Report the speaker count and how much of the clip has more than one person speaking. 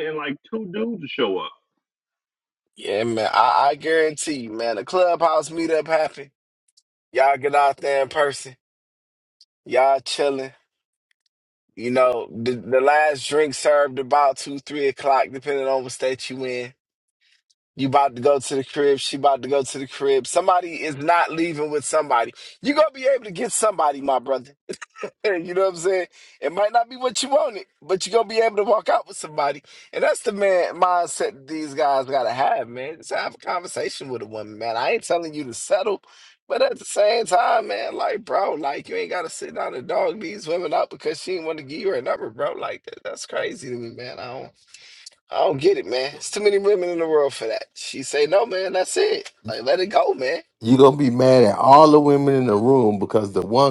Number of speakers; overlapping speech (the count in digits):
3, no overlap